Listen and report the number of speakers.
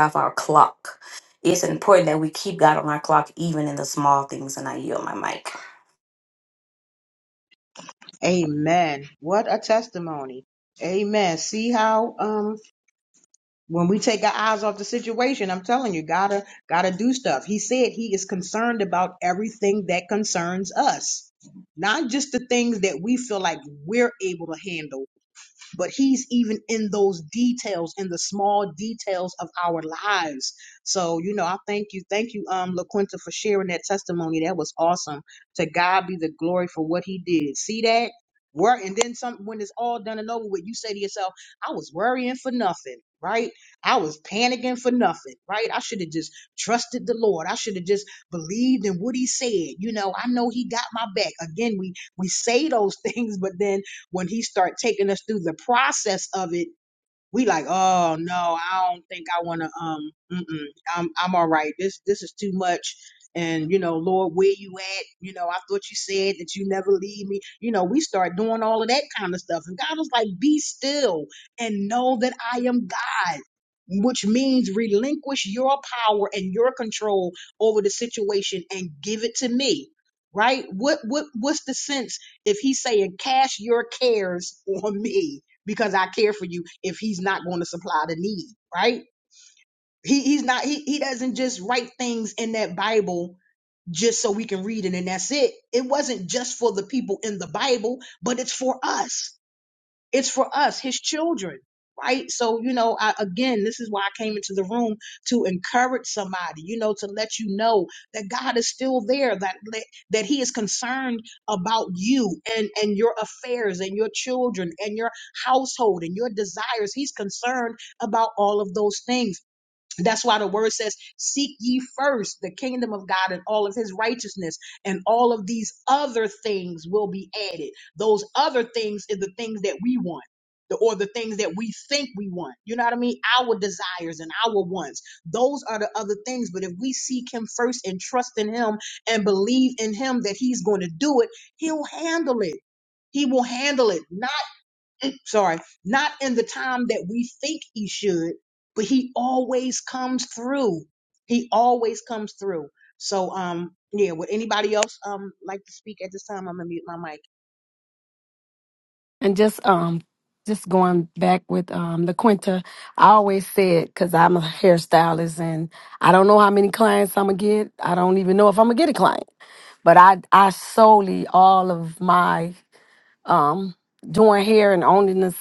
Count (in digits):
3